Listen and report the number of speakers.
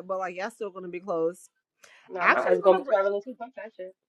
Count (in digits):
2